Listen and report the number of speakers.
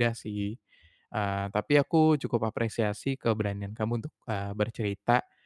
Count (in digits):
1